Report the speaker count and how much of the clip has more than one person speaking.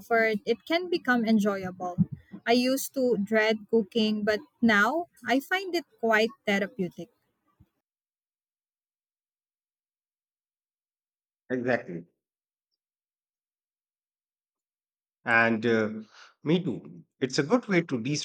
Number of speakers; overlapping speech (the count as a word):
two, no overlap